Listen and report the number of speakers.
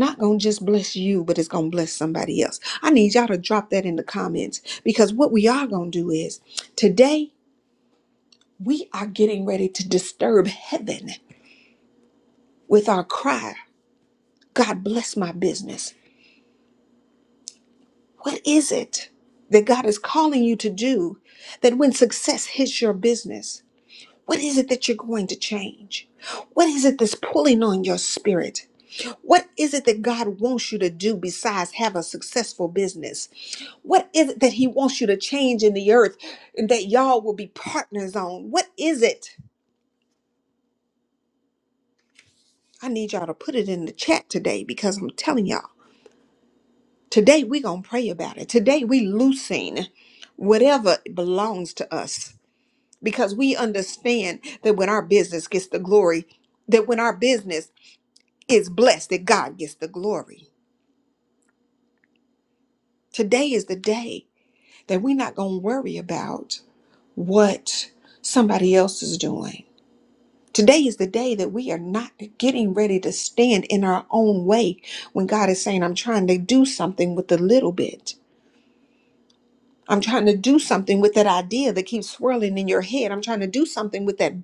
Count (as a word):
one